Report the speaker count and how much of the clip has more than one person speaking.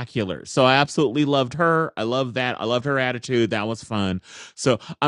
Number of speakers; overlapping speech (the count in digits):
1, no overlap